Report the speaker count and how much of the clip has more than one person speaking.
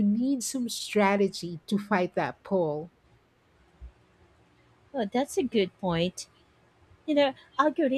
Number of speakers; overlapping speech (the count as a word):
two, no overlap